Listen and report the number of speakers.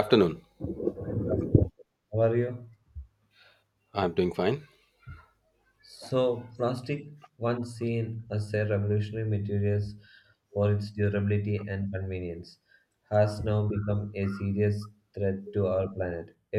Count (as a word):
two